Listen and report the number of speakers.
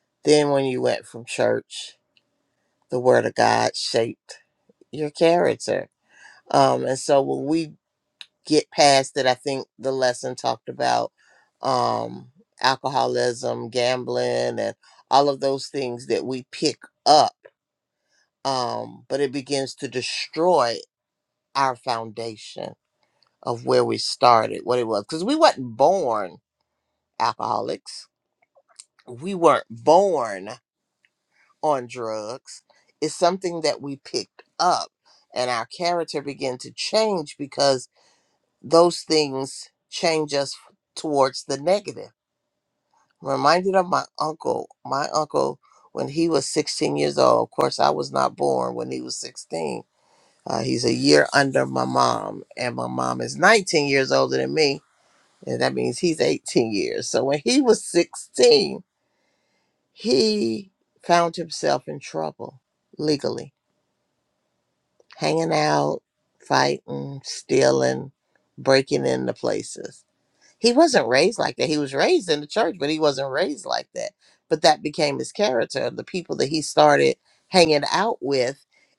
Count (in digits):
1